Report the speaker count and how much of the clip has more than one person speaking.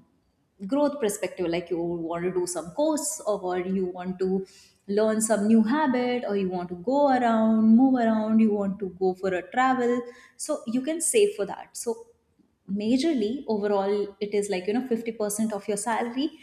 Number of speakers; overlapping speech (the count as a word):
one, no overlap